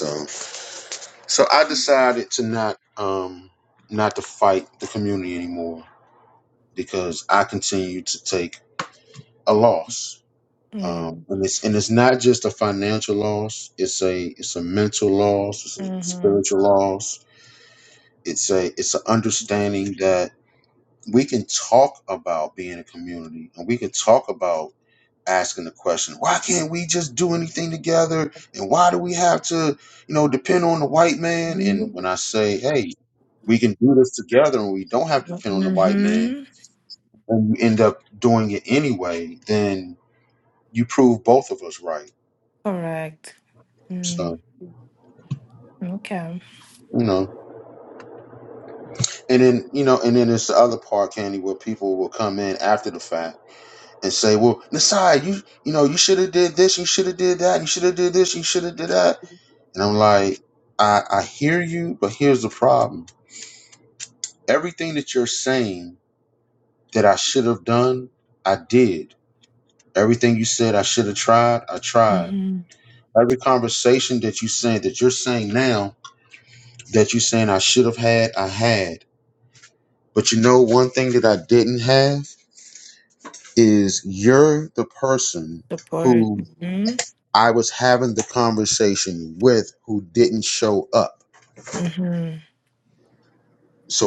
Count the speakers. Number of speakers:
two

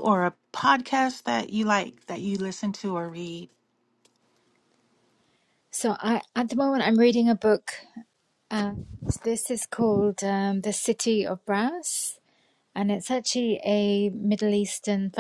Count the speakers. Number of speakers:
two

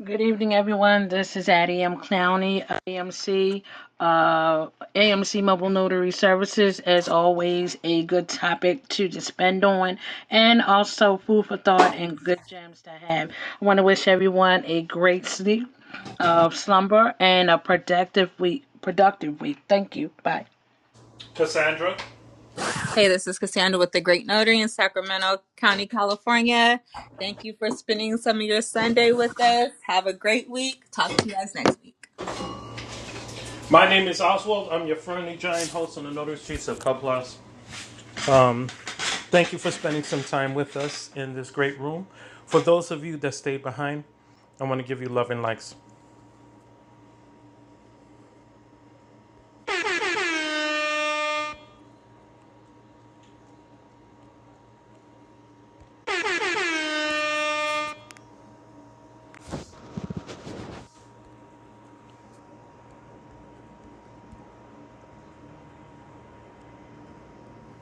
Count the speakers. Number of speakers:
three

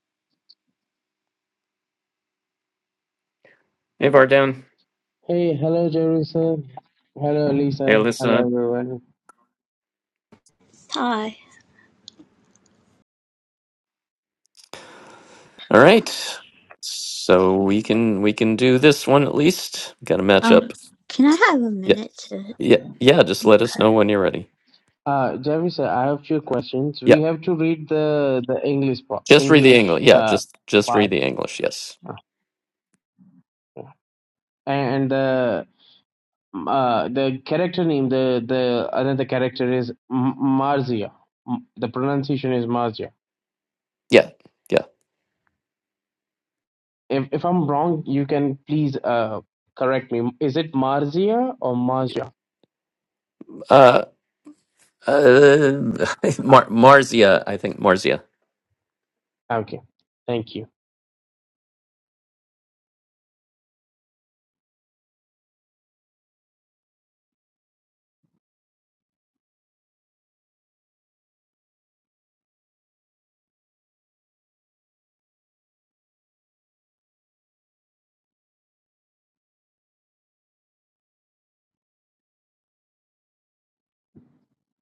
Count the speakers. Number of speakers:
three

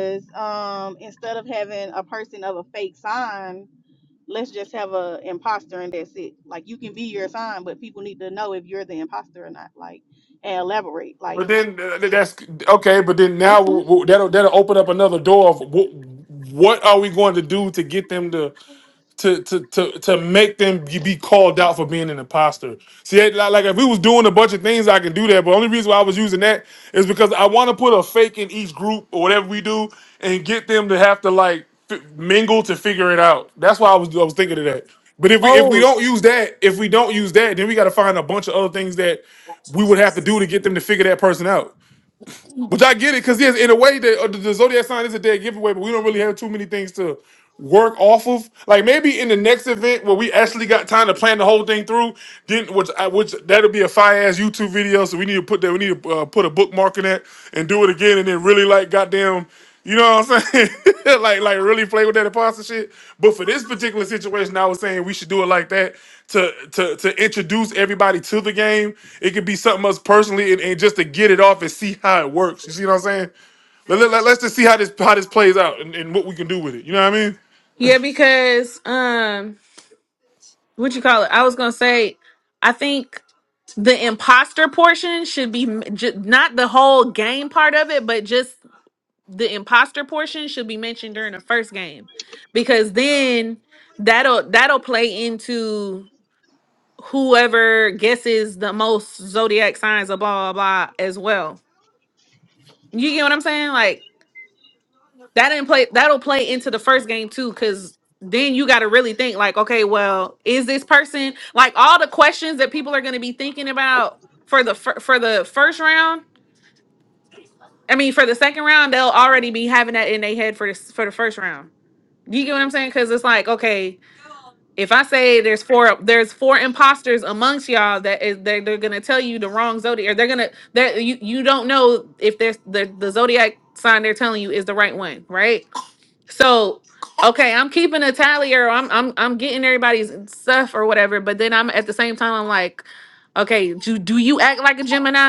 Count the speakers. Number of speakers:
three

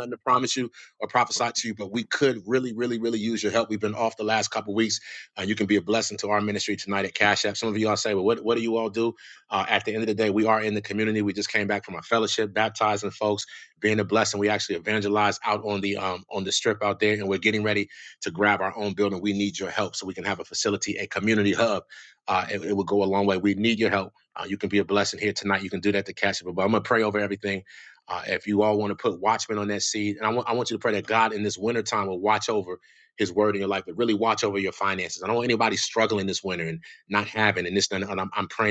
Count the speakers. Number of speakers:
one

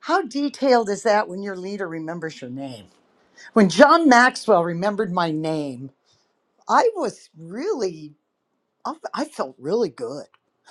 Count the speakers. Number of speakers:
one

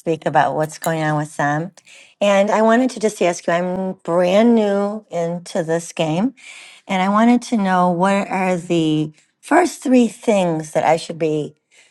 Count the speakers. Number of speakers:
one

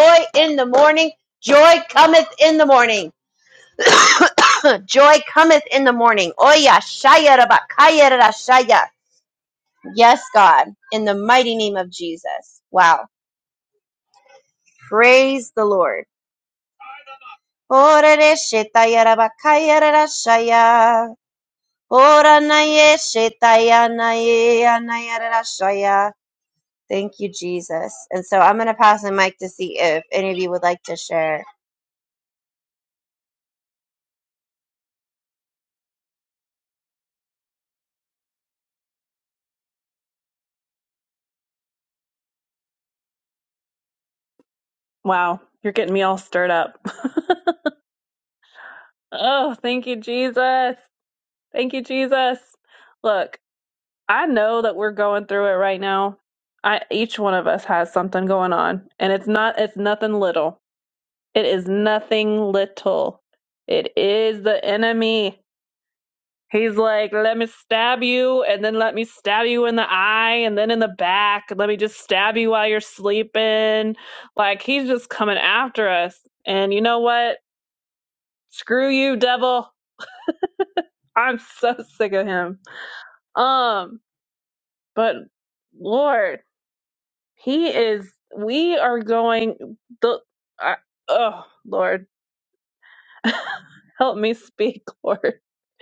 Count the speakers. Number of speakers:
two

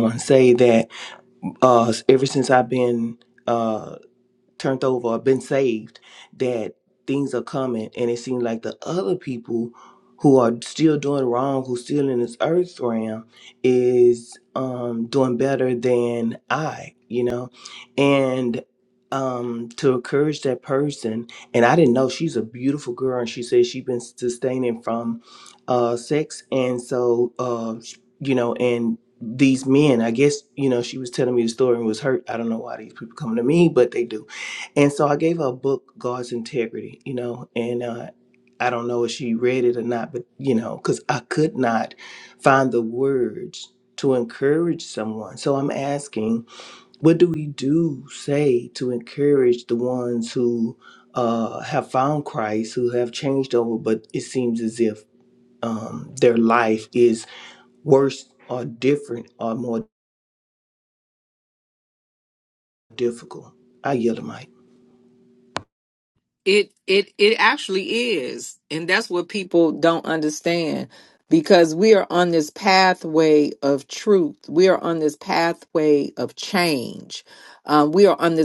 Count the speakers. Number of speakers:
two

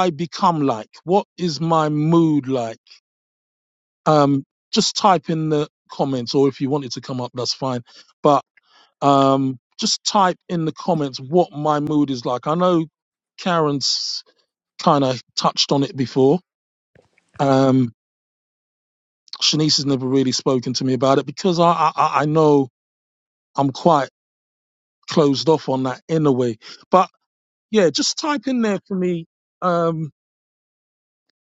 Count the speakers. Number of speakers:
one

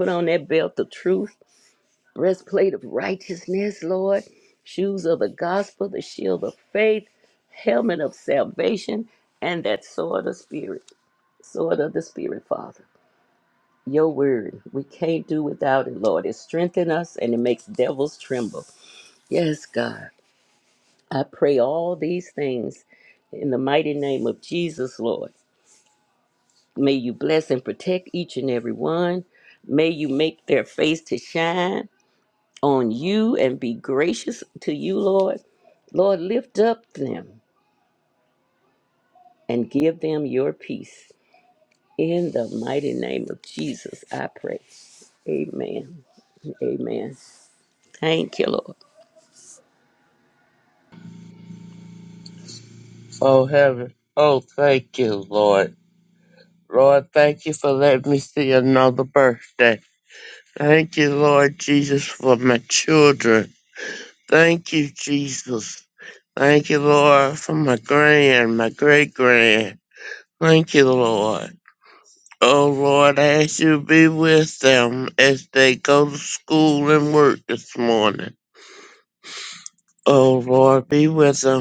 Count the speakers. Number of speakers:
two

